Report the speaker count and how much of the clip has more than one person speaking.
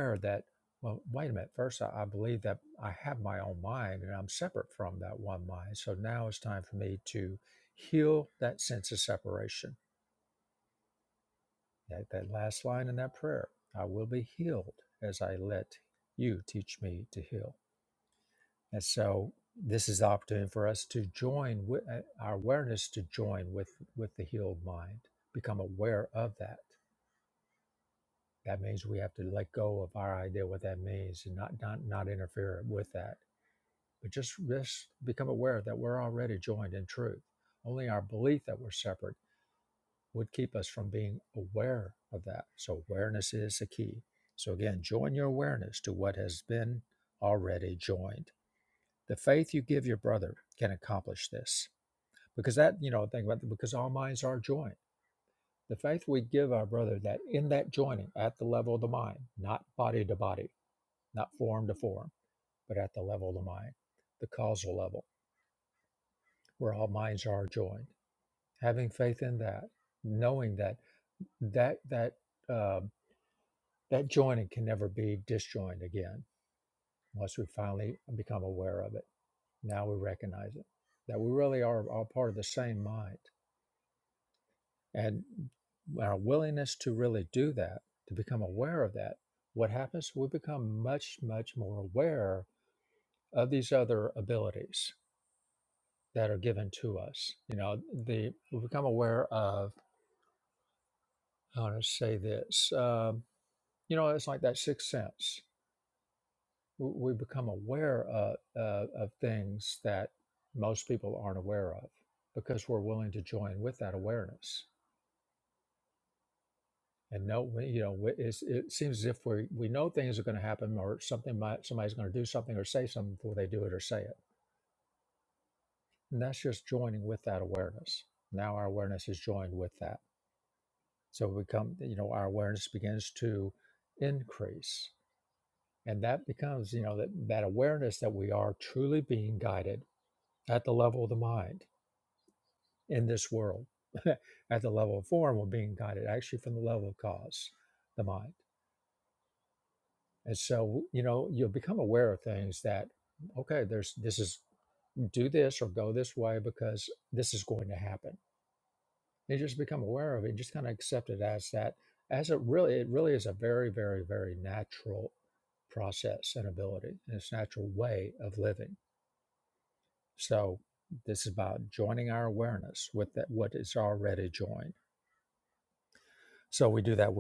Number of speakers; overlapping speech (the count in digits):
1, no overlap